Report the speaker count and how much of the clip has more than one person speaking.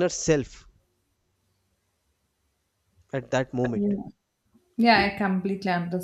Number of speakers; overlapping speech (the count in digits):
2, about 4%